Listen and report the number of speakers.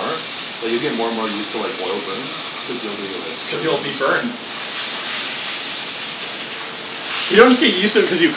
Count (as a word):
two